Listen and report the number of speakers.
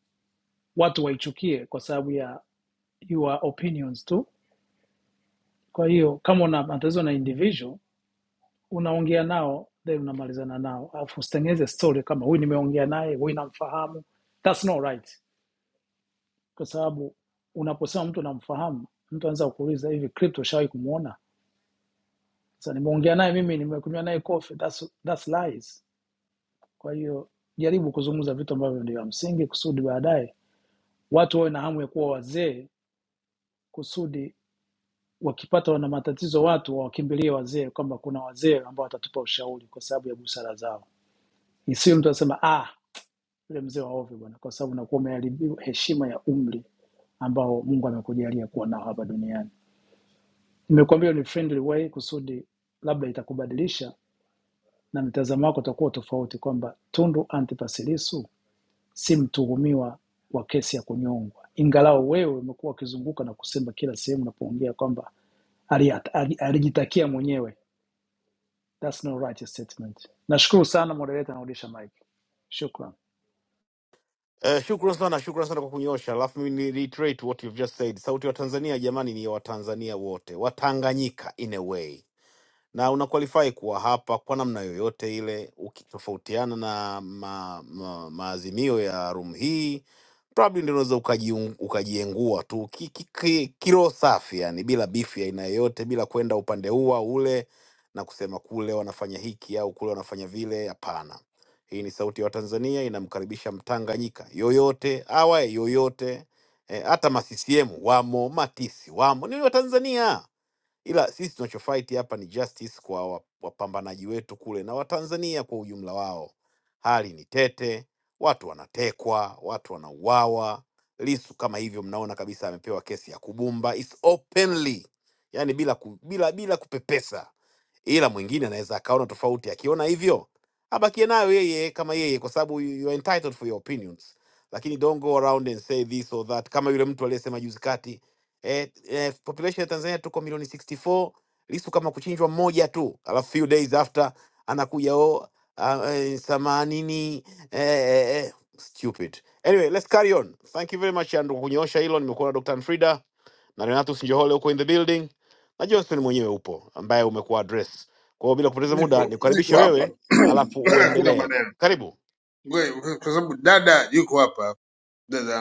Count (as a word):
three